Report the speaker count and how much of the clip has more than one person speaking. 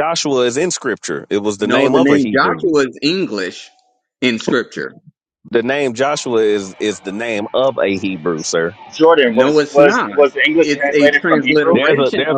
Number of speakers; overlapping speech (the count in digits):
3, about 30%